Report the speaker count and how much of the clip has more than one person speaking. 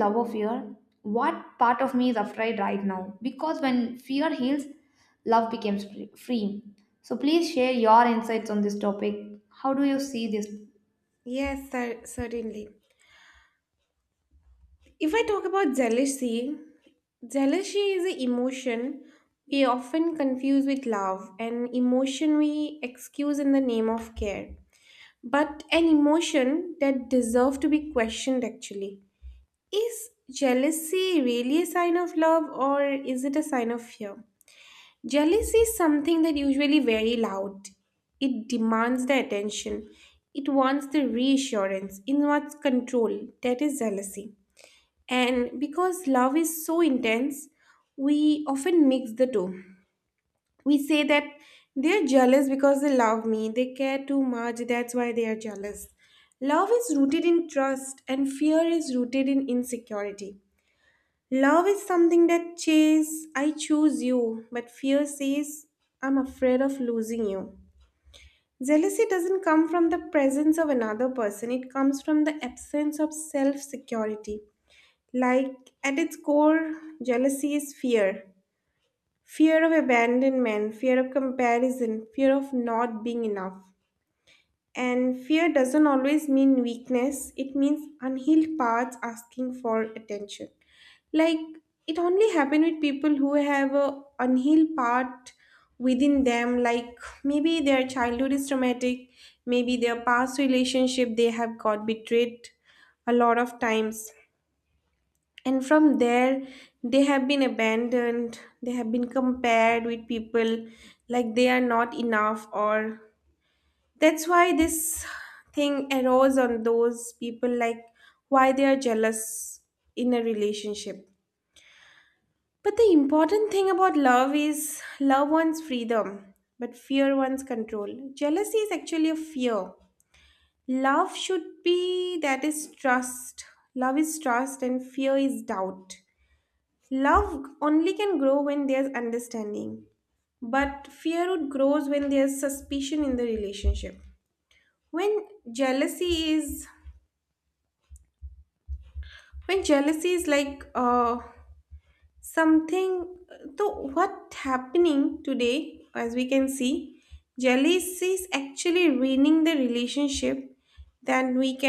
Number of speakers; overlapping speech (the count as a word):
two, no overlap